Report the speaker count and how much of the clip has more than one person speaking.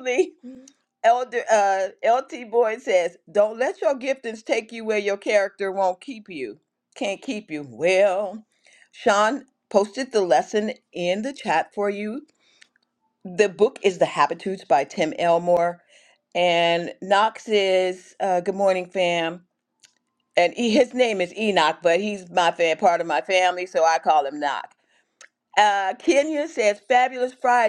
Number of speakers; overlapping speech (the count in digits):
1, no overlap